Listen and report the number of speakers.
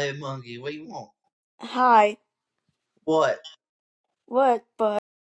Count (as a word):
two